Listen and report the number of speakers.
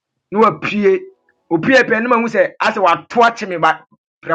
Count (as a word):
one